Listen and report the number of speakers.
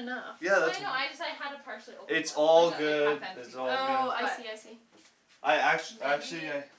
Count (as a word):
three